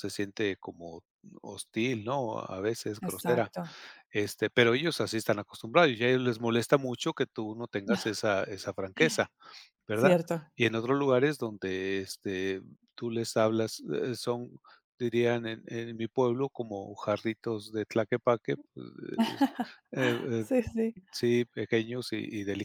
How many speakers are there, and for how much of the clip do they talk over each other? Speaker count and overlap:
two, about 3%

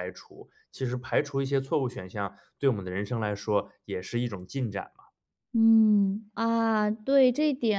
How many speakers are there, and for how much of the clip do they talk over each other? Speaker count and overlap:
two, no overlap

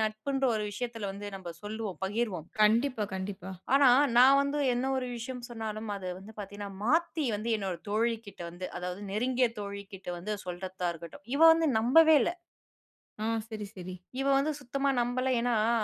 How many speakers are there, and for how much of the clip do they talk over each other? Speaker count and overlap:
two, no overlap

